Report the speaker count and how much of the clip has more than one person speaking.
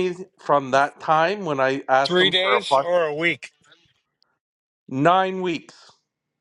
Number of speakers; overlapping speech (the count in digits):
2, about 13%